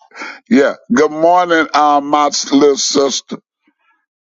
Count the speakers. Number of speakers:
one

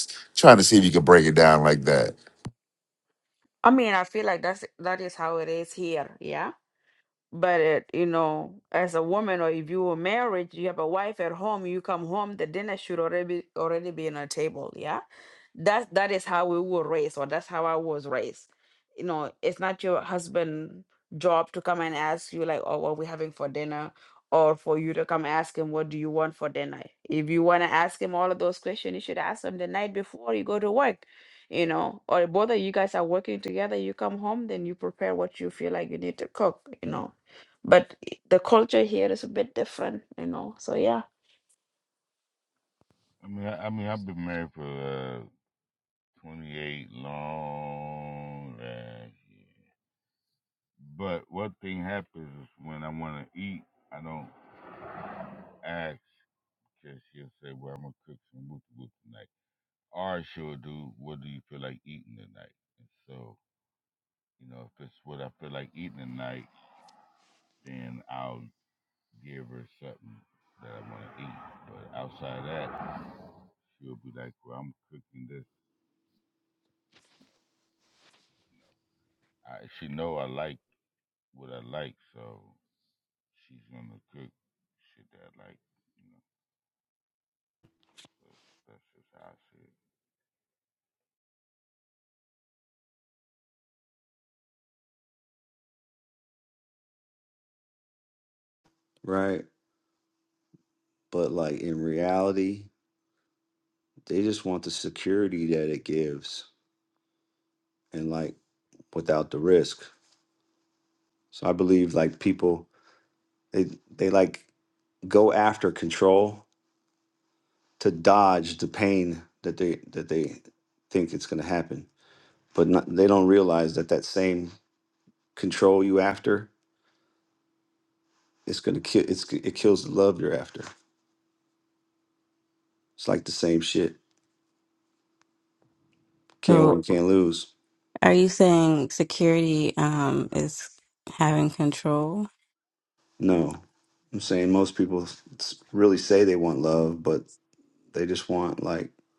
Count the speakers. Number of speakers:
five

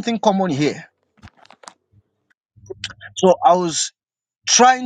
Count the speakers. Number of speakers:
one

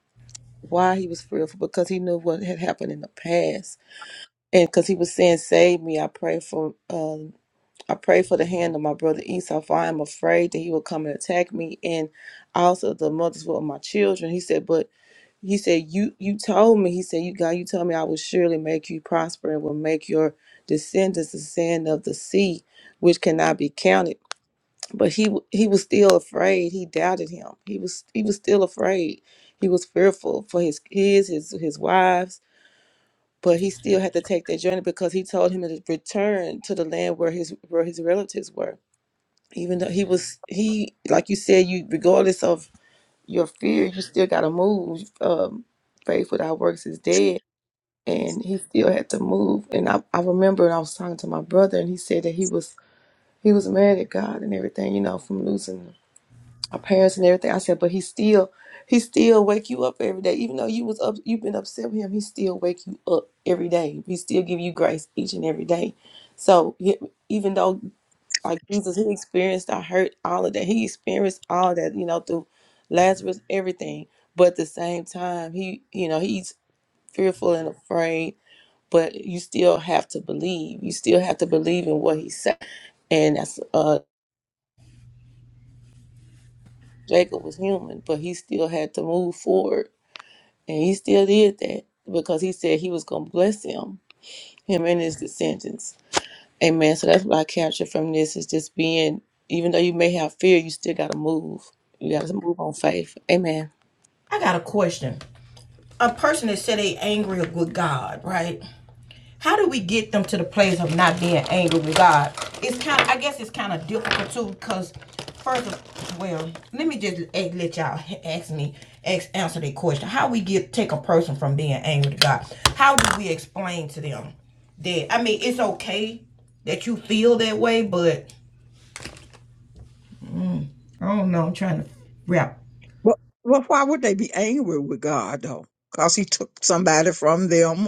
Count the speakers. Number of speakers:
three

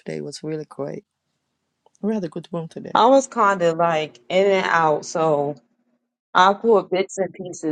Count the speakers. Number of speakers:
two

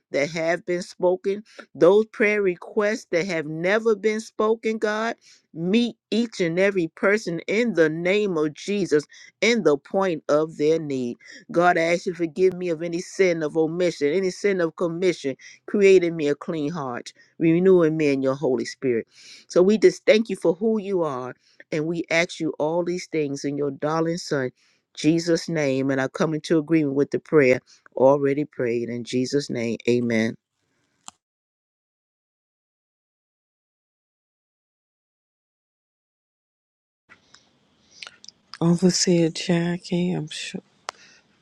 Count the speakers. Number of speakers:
two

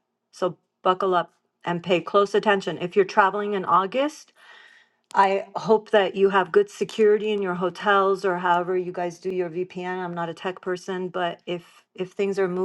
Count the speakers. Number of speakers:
one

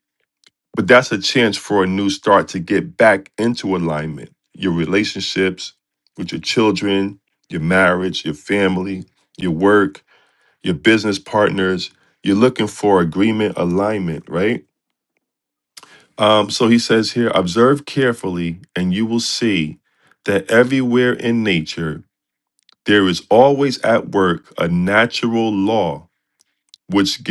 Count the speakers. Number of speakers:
one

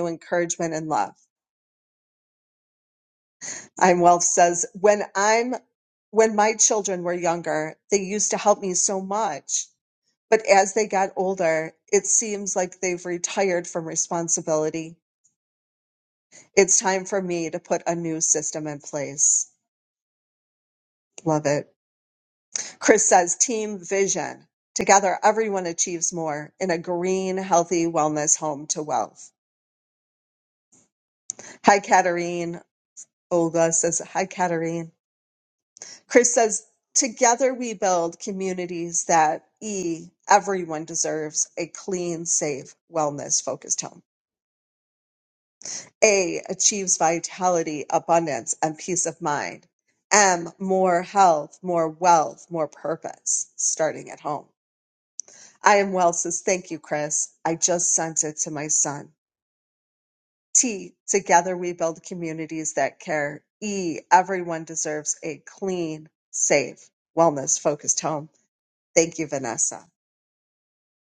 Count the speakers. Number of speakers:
one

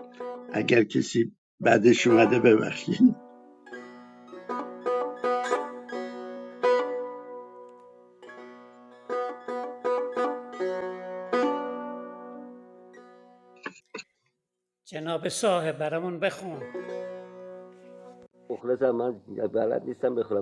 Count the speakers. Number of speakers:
three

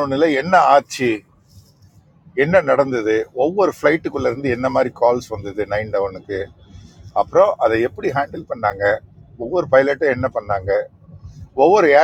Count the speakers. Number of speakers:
one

